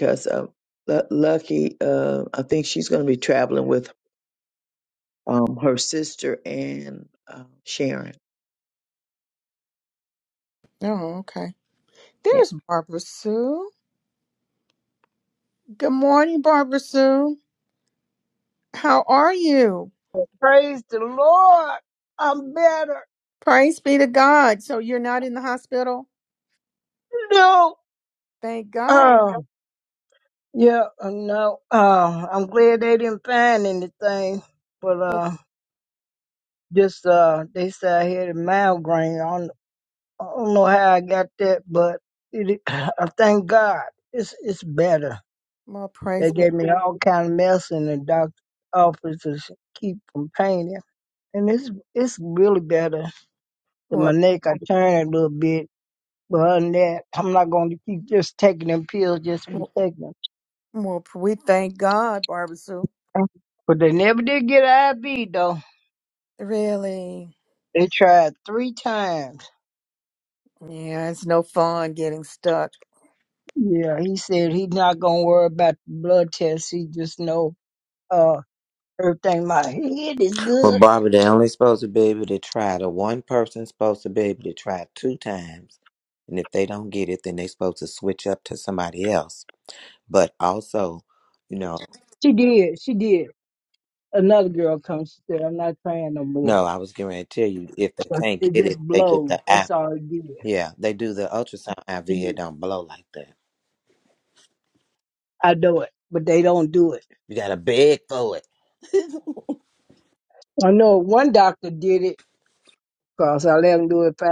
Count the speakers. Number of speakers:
4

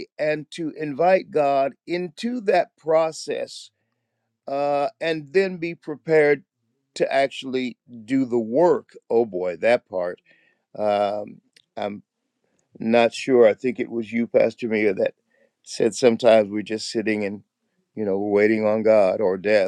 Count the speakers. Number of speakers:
1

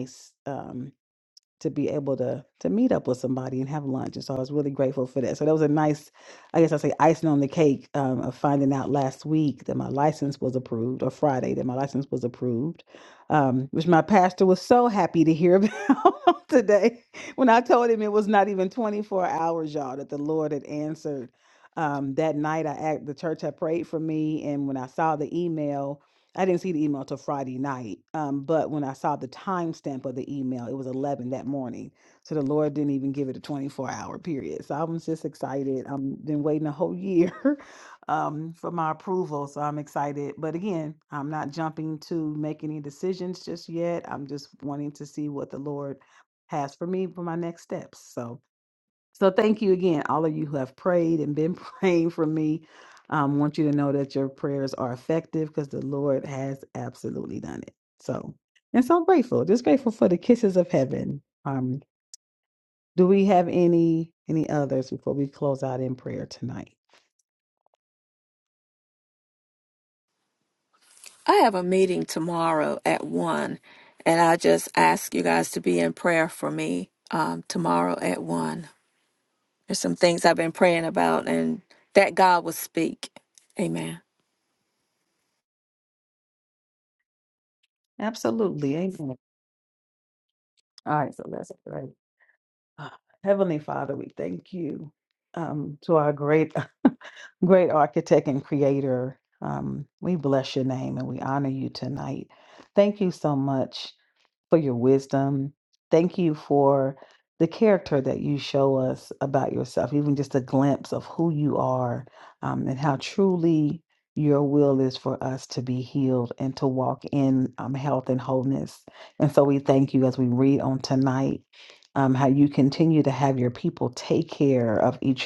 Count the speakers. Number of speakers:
2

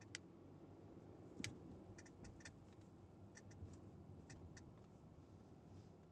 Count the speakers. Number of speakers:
0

